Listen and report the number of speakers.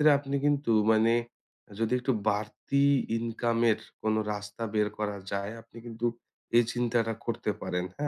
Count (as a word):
one